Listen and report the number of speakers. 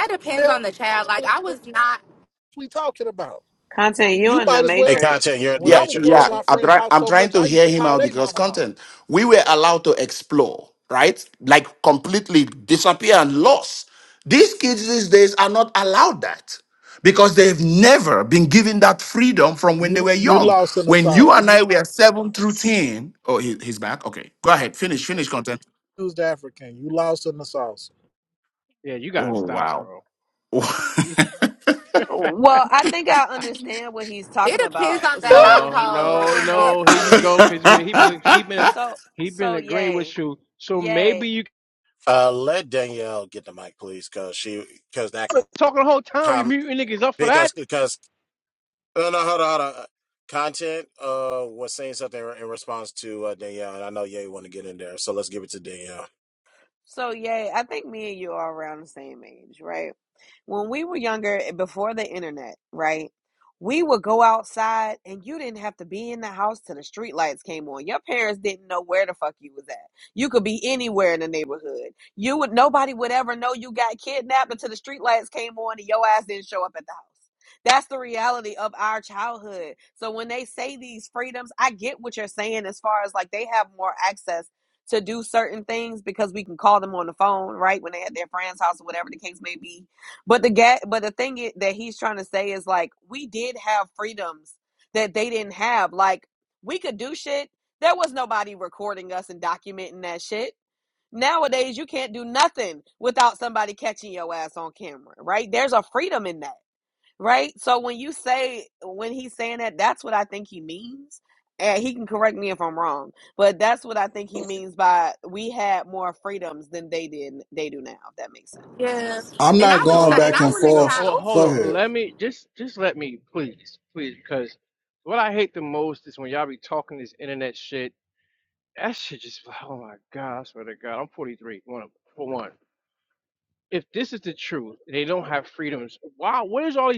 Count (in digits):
6